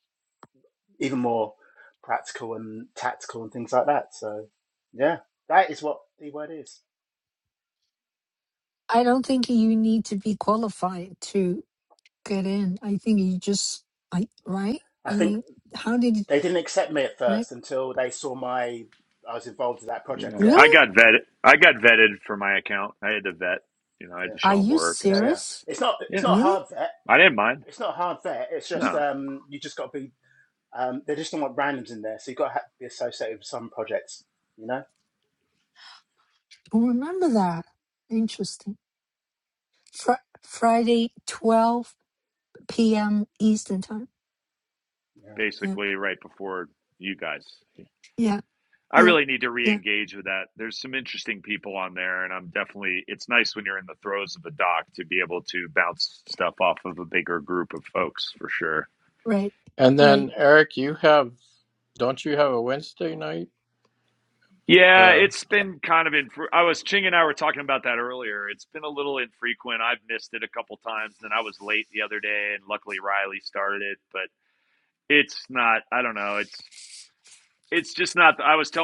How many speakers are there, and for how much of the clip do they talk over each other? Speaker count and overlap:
4, about 6%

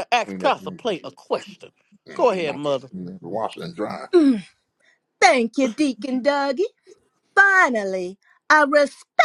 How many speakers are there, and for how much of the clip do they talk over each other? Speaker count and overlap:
3, about 13%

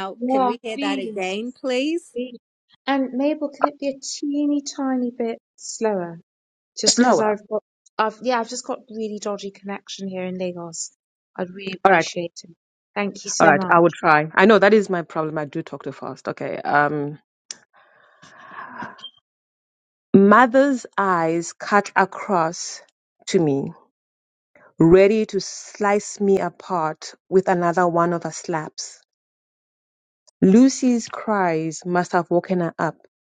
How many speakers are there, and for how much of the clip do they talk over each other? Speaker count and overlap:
3, about 7%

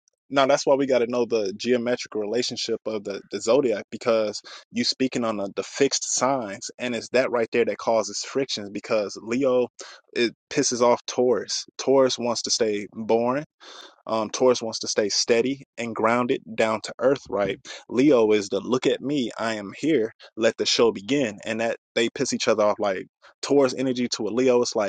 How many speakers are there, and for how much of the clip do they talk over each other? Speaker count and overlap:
1, no overlap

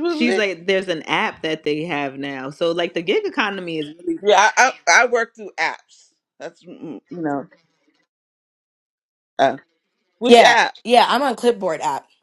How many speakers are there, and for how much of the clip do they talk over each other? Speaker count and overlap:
3, about 6%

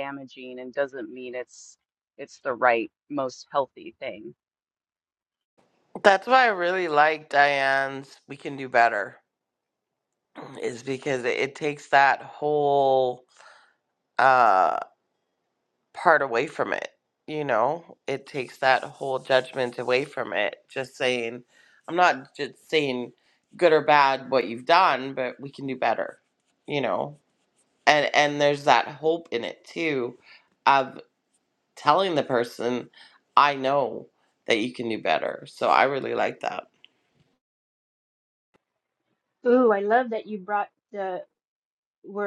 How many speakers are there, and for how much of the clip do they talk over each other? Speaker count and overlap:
3, no overlap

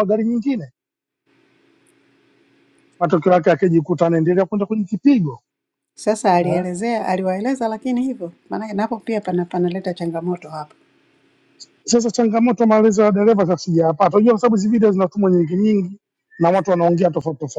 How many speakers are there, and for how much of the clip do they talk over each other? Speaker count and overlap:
2, about 1%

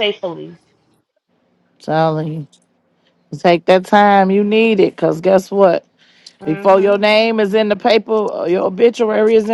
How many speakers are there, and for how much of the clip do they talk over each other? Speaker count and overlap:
2, about 5%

